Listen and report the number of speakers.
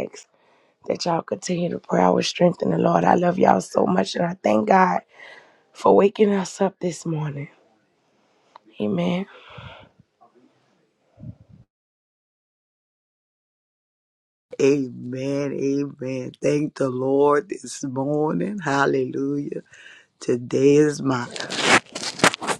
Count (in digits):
2